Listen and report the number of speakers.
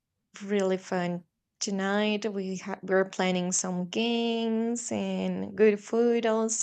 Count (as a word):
one